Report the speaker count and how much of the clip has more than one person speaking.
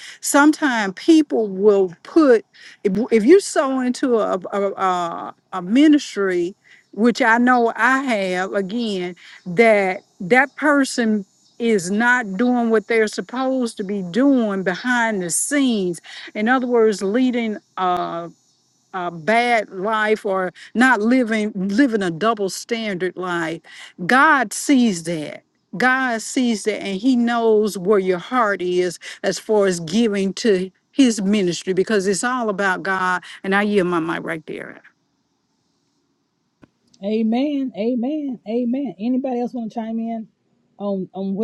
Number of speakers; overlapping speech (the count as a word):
two, no overlap